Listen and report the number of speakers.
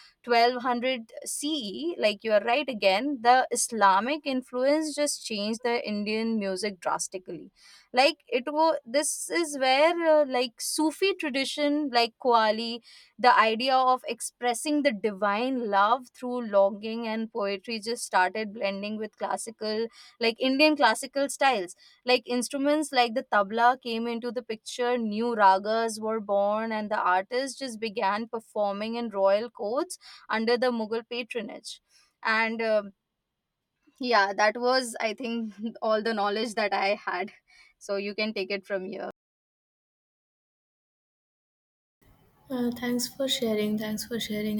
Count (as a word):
two